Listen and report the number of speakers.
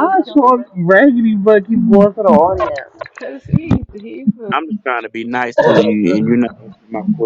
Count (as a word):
three